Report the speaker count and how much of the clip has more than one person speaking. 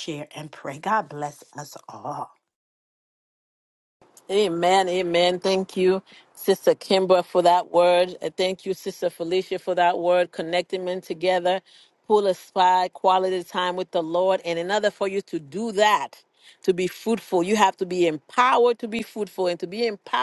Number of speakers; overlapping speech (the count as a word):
two, no overlap